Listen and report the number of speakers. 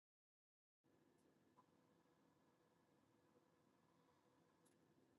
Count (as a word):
zero